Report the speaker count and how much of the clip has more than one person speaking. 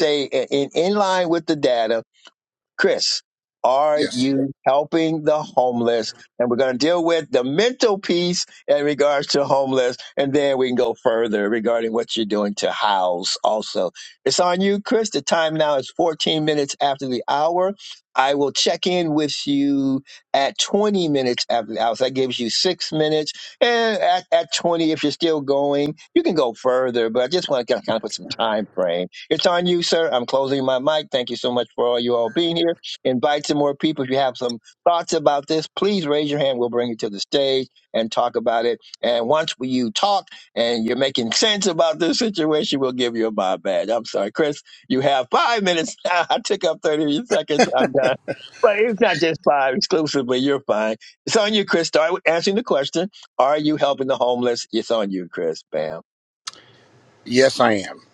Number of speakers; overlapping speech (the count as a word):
two, about 1%